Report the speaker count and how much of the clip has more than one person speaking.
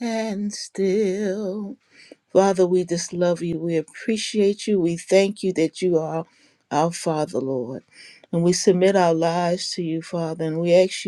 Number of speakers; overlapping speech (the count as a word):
one, no overlap